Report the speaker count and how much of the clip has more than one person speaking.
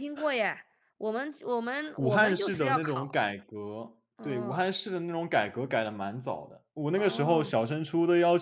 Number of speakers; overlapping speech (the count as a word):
two, about 25%